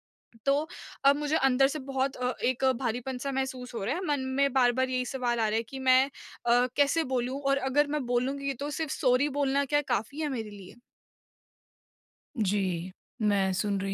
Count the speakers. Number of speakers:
2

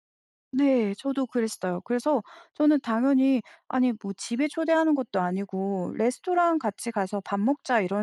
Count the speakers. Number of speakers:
1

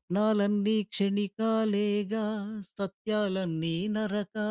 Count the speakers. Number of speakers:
1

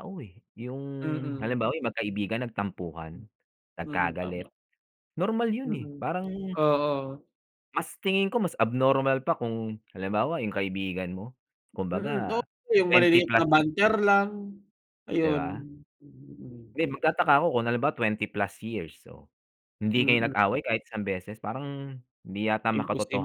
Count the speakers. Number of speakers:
2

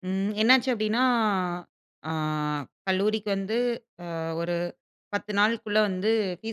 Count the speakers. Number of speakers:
1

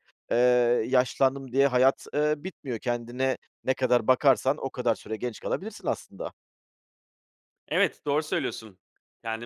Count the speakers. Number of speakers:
2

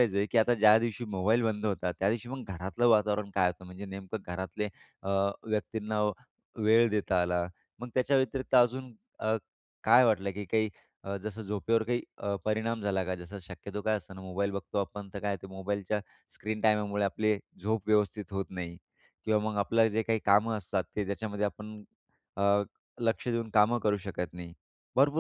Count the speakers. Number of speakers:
1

